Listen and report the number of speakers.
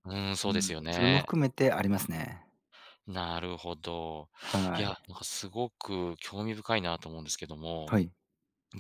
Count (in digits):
2